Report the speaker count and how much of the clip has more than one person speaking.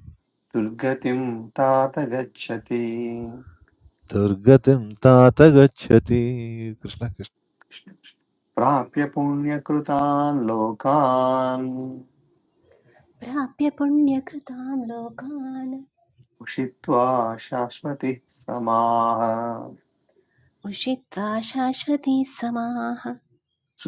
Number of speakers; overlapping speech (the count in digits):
3, no overlap